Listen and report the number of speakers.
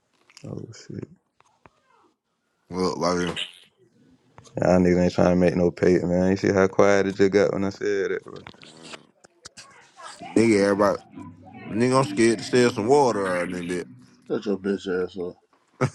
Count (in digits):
3